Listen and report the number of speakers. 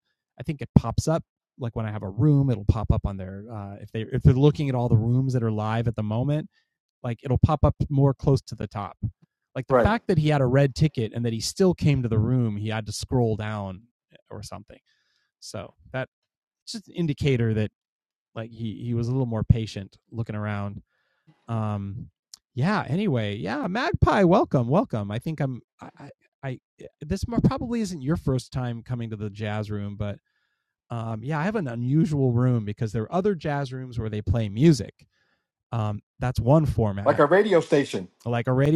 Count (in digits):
2